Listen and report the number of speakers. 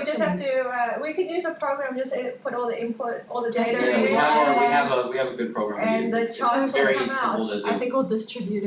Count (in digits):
3